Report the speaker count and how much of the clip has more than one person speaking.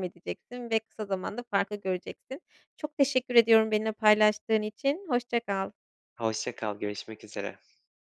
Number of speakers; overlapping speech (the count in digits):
2, no overlap